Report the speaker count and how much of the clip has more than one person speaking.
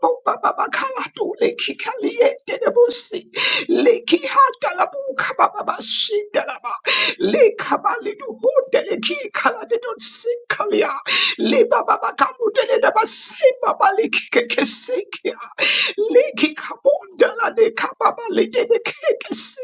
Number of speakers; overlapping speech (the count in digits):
1, no overlap